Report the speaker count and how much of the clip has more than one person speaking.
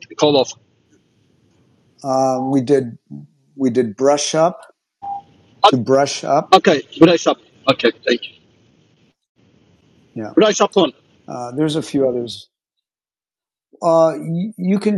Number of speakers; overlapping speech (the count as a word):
two, about 1%